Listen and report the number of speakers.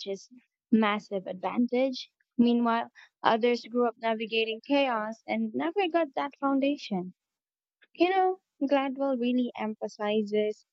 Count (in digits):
1